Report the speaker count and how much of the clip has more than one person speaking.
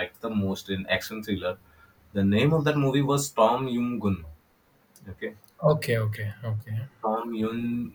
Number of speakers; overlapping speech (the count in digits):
2, no overlap